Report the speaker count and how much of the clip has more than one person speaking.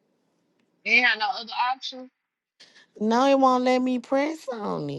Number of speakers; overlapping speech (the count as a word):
two, no overlap